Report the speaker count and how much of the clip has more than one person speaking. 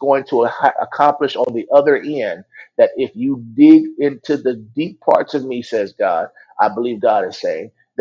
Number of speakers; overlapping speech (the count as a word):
one, no overlap